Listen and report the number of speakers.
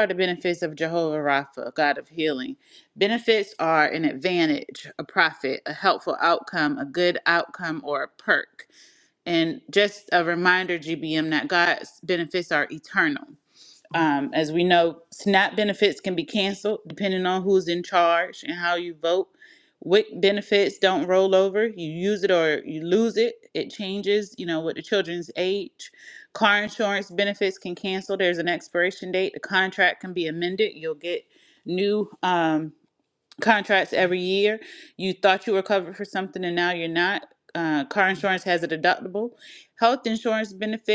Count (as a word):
one